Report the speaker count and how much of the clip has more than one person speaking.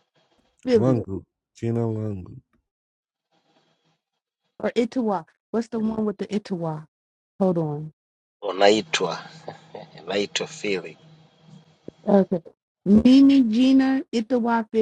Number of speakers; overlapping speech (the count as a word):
three, about 2%